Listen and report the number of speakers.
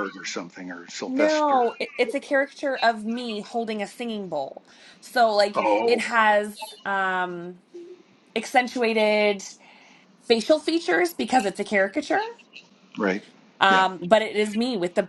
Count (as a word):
two